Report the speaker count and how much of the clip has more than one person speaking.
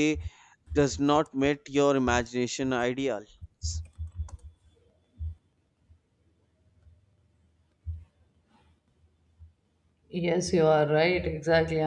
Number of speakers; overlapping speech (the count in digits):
2, no overlap